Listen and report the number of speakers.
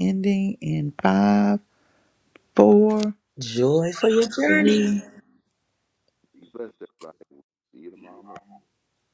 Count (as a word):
three